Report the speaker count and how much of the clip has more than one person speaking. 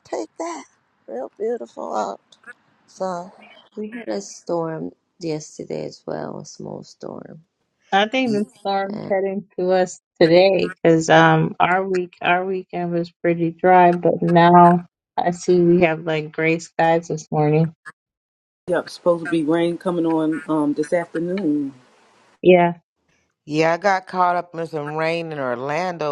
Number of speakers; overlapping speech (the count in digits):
5, about 2%